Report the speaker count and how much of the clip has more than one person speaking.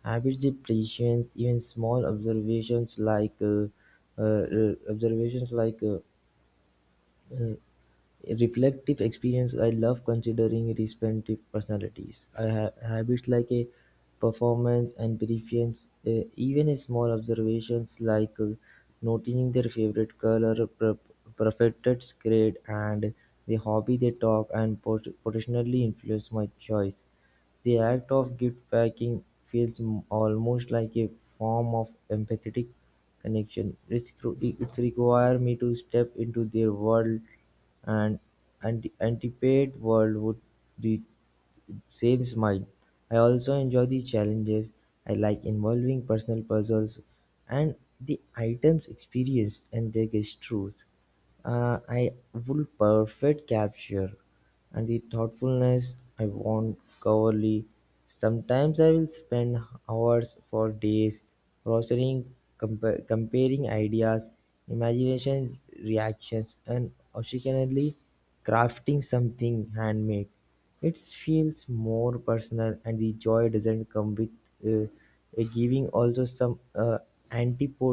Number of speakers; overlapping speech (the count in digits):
1, no overlap